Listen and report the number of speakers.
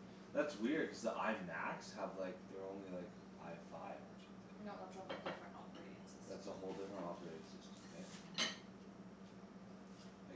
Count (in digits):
2